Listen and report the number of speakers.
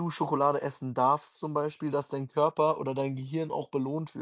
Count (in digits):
1